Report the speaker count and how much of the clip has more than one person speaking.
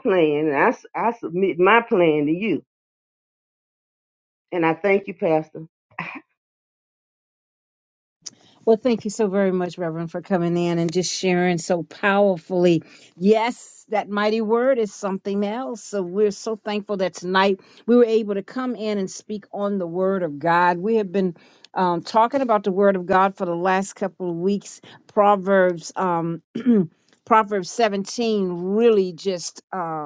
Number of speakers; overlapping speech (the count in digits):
2, no overlap